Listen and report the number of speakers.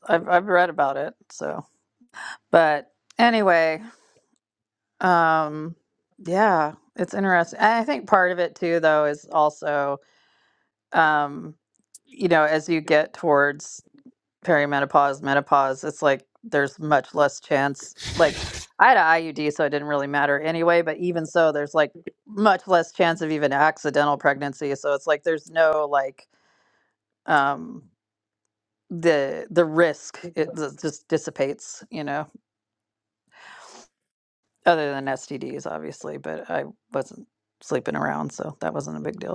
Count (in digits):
1